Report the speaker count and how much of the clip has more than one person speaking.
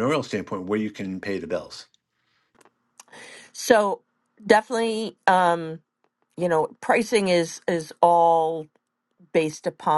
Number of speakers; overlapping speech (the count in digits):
2, no overlap